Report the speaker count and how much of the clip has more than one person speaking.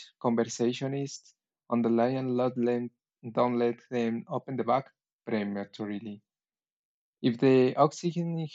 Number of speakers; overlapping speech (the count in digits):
1, no overlap